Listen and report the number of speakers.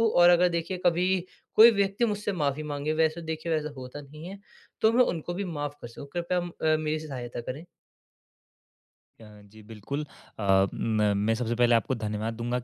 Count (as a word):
two